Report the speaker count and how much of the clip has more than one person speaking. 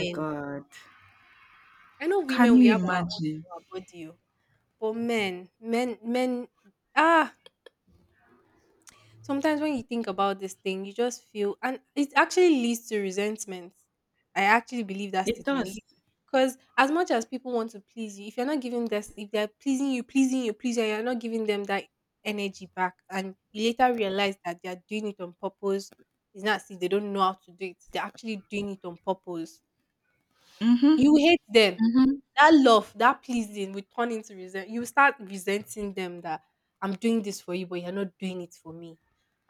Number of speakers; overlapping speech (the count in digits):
2, about 5%